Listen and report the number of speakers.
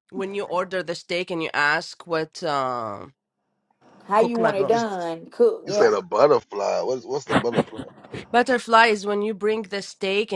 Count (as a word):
three